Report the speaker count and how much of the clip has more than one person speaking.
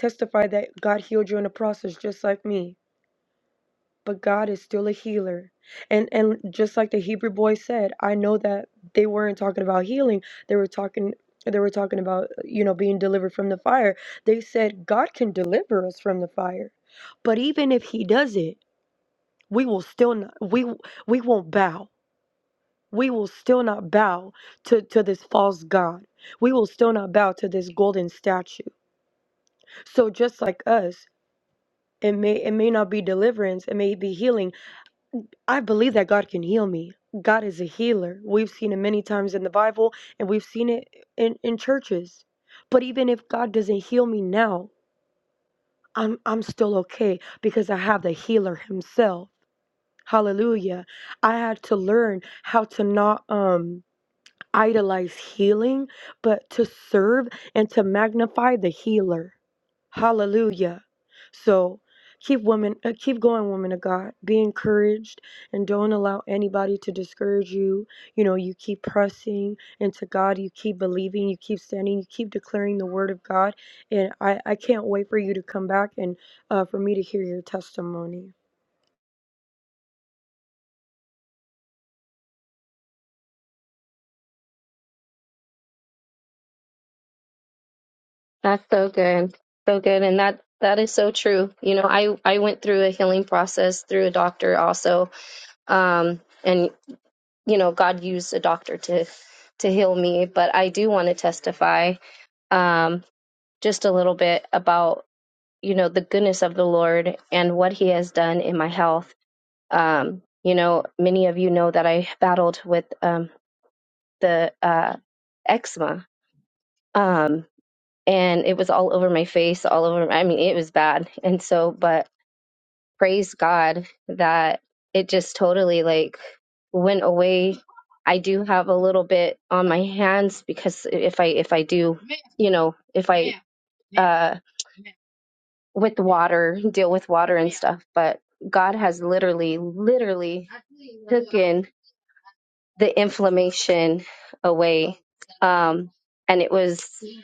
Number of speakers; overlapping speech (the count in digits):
2, no overlap